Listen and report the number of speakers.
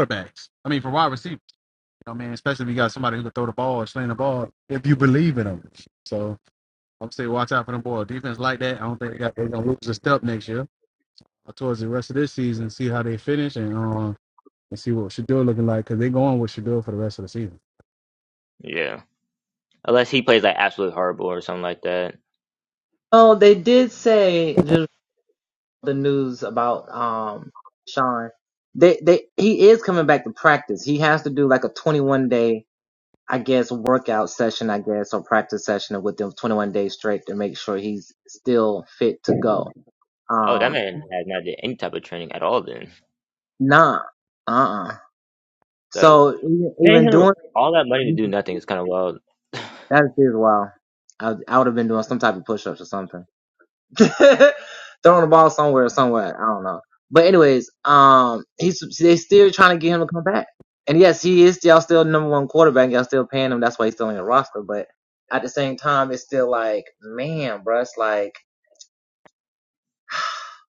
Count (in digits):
3